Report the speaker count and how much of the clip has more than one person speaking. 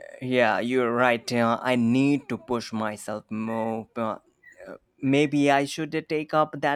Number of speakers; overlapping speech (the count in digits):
1, no overlap